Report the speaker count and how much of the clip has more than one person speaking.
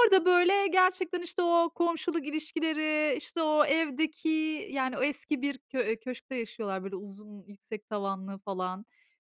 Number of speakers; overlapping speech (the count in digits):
1, no overlap